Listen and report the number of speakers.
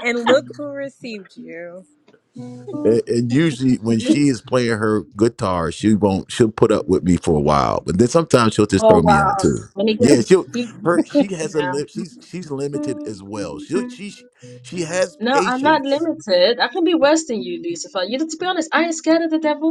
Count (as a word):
three